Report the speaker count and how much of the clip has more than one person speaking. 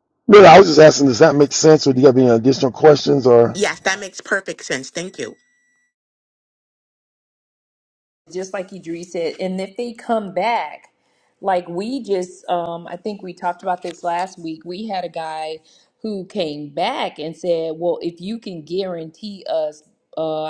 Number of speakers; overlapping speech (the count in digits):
3, no overlap